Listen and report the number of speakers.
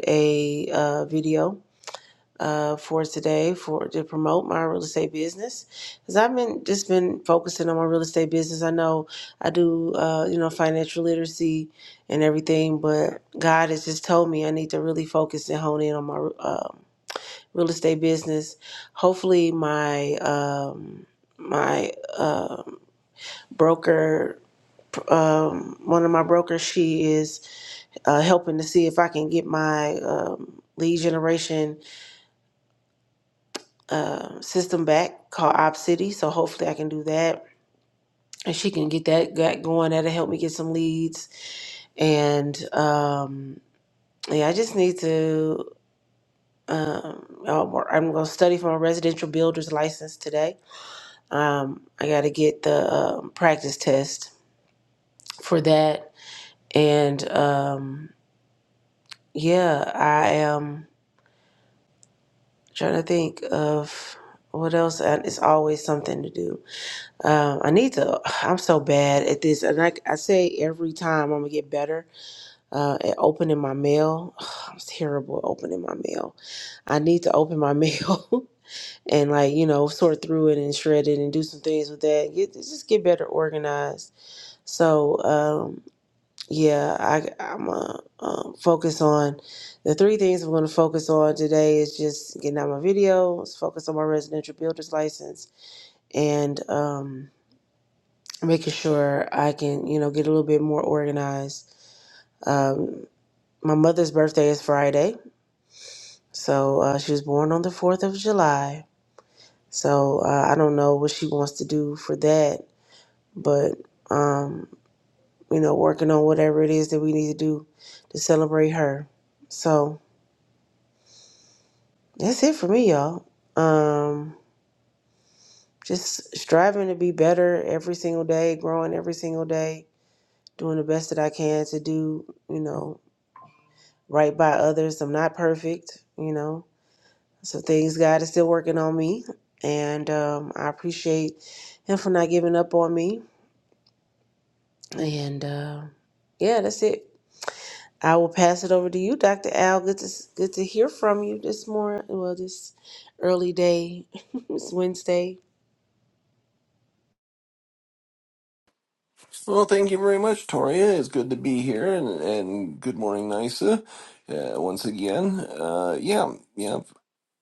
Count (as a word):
two